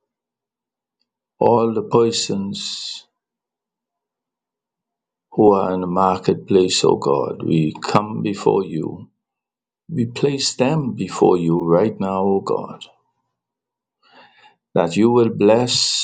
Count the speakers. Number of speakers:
one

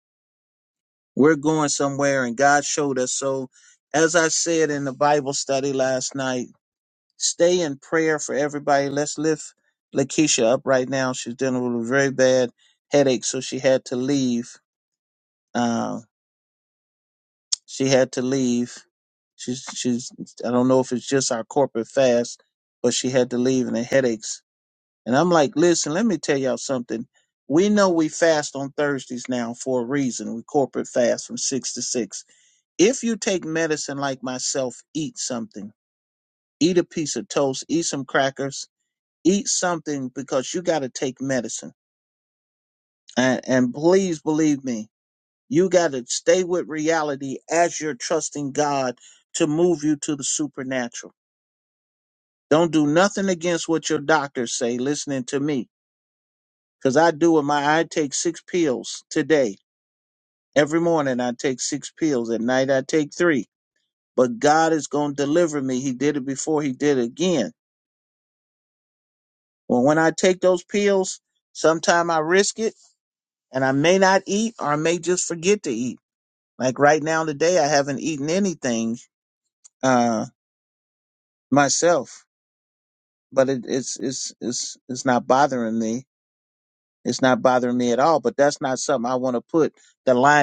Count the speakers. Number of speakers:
one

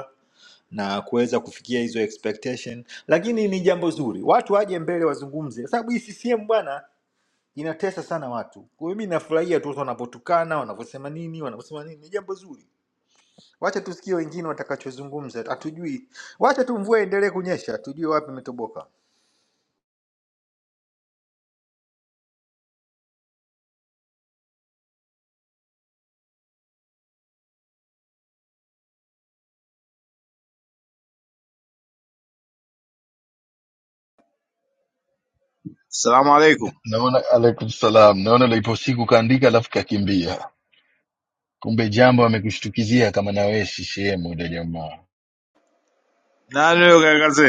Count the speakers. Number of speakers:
three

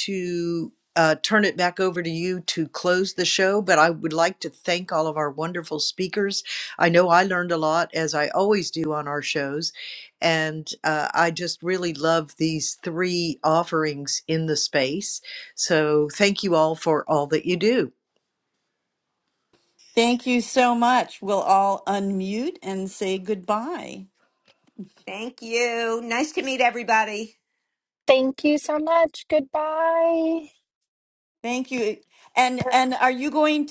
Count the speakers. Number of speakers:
four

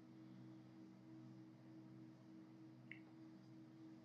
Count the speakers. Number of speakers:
zero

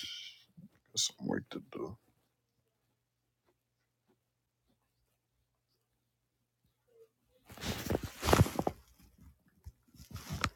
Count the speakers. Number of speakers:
zero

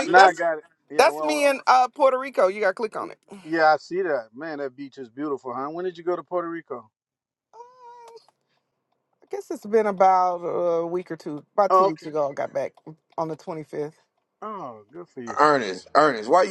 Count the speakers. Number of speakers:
three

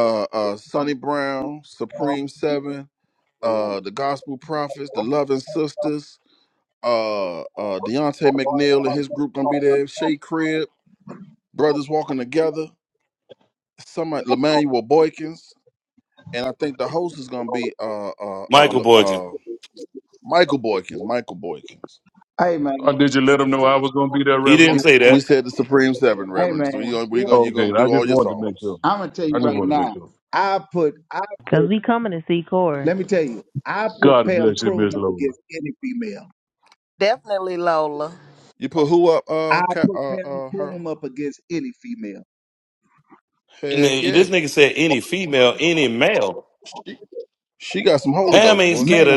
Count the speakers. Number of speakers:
six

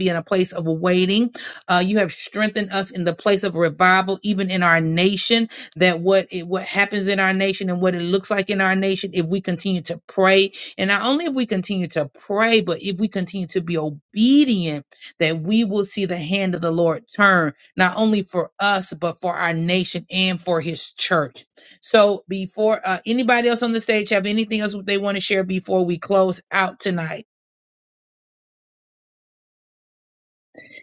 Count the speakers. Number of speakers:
one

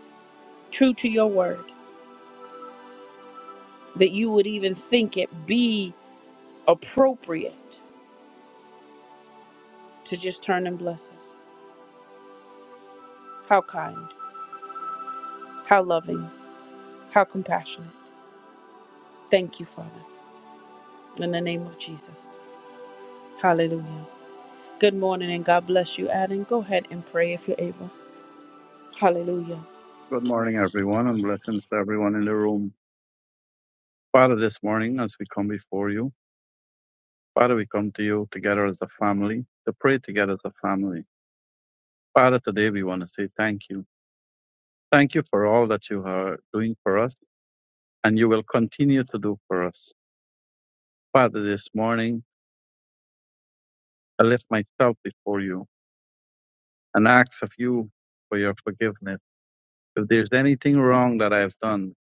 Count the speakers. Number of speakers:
two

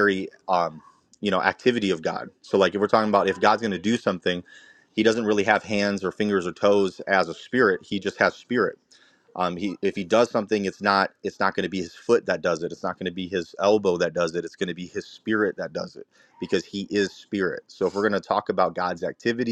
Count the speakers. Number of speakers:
one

